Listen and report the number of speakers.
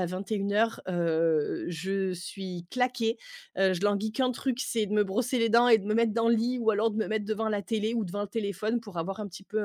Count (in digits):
1